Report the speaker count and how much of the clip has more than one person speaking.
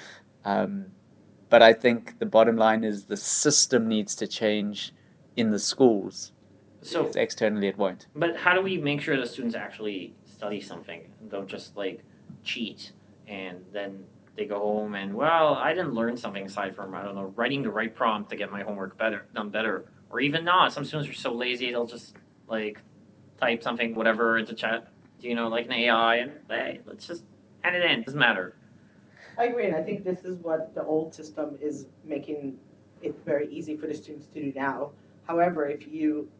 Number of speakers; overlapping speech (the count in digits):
3, under 1%